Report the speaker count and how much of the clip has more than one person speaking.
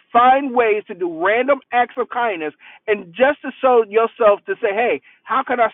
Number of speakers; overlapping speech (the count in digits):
1, no overlap